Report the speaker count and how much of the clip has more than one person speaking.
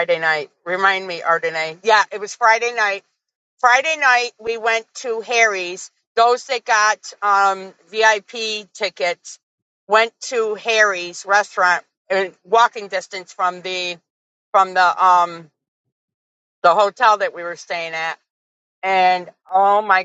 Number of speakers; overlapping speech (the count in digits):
1, no overlap